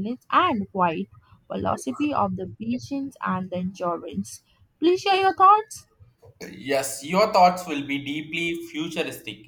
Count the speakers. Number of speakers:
2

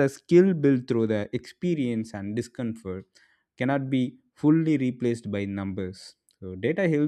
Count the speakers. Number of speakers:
1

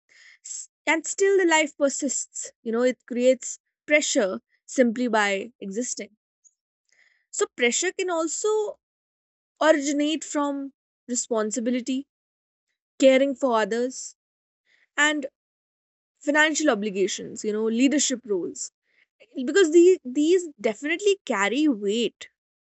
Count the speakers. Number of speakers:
1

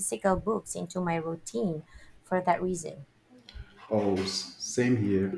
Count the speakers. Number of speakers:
2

